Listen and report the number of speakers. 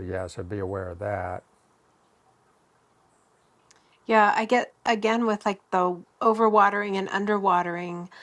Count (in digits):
2